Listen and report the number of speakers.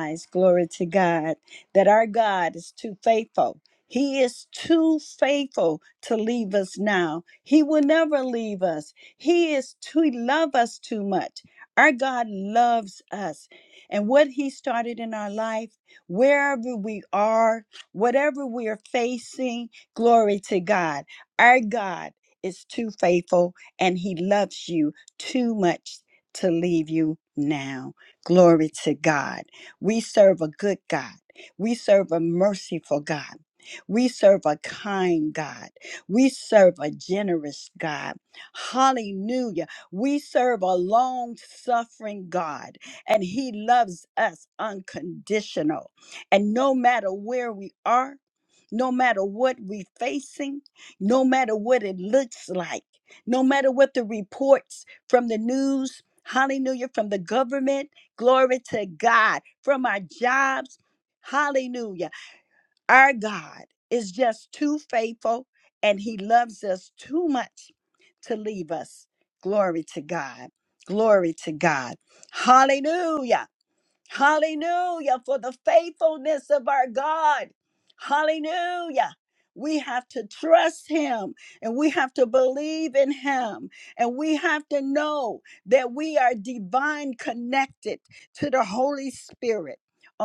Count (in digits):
1